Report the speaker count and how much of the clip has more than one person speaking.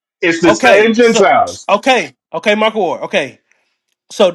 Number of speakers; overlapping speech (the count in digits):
2, about 18%